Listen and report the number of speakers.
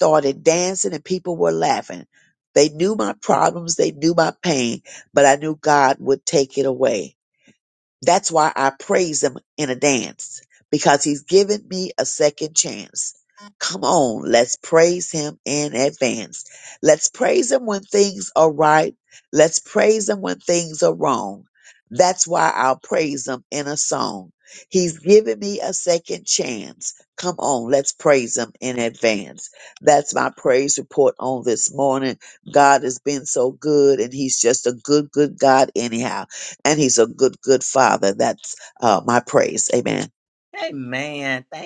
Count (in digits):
2